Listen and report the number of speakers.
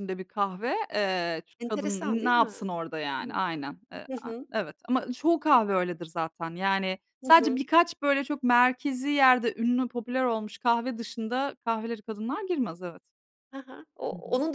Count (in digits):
2